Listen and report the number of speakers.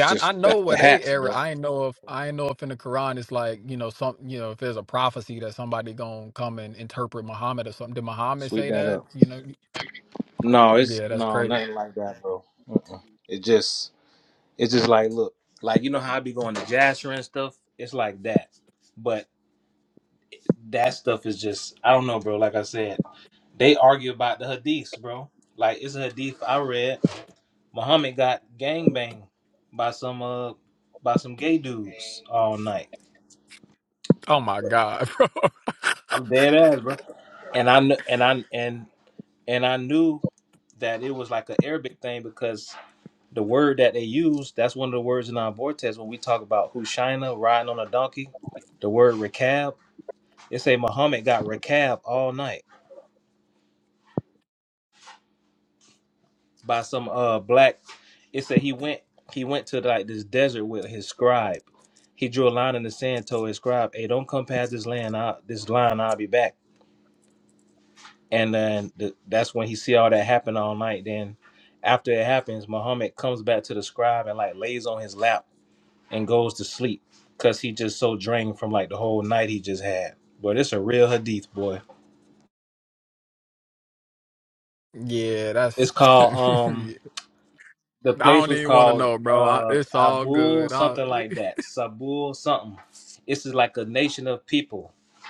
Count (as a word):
two